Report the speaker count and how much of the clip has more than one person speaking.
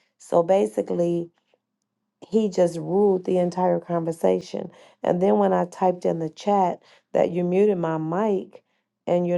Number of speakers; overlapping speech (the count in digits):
1, no overlap